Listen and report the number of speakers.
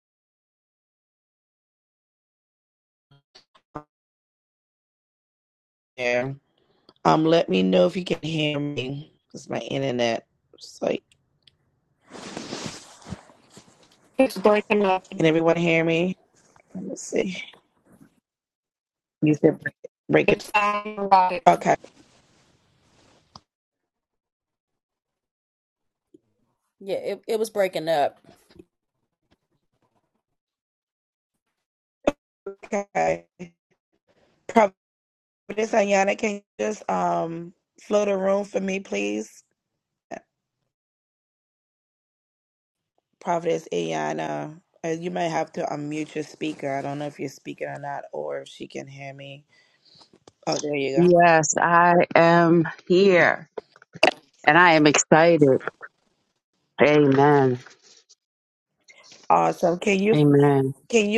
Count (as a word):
four